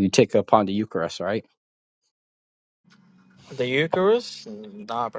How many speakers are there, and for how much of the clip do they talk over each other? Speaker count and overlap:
2, no overlap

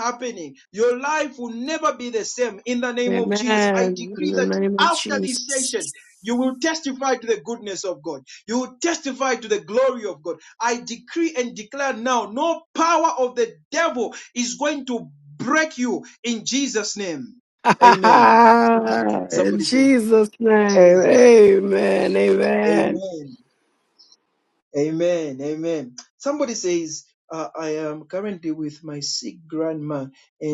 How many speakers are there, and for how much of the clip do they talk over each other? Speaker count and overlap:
2, about 11%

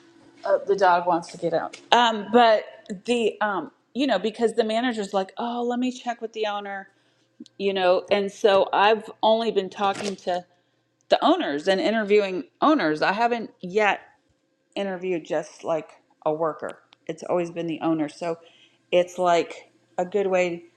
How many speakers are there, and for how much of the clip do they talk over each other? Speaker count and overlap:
1, no overlap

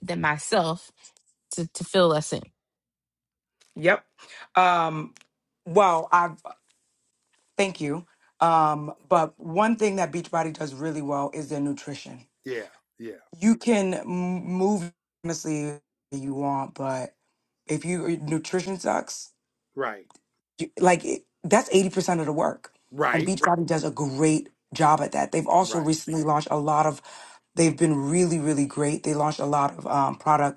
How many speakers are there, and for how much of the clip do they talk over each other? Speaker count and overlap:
3, about 1%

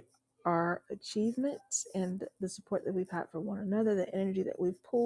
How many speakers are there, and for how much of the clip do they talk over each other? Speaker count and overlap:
1, no overlap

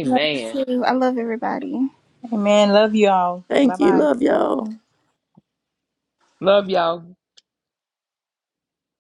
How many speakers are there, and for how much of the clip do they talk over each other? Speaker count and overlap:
4, about 8%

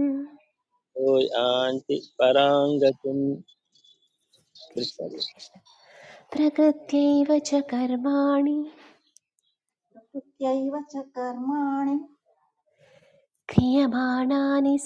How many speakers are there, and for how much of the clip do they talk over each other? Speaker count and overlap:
3, no overlap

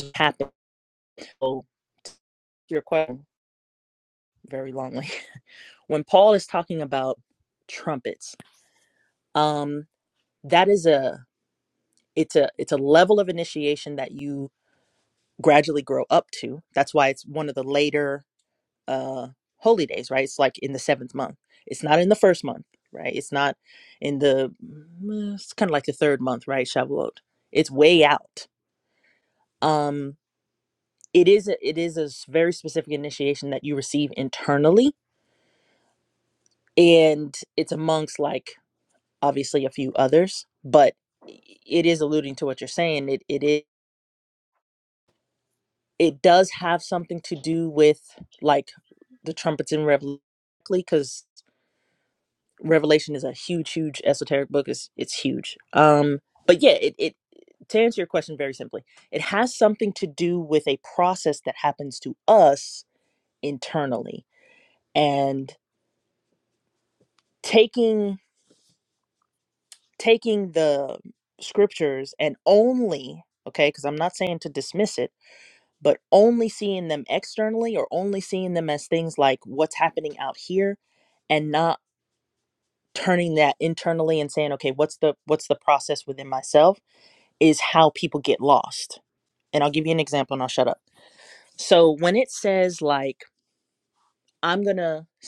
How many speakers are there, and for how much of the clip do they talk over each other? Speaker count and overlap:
1, no overlap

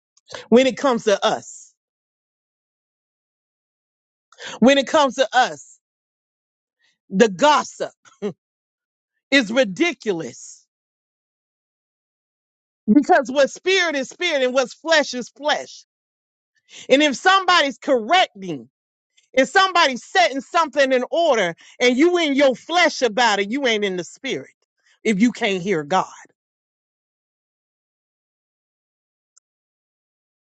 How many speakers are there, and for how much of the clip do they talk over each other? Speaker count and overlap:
1, no overlap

